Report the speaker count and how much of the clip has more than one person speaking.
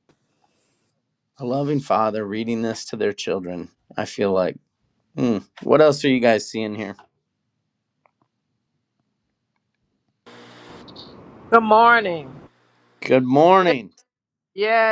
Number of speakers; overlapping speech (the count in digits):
2, about 1%